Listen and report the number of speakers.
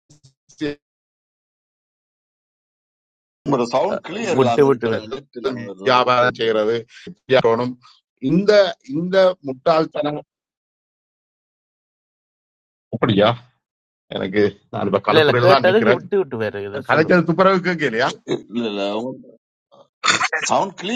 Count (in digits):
3